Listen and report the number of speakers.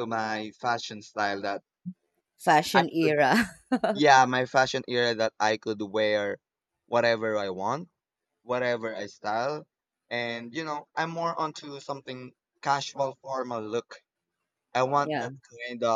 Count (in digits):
2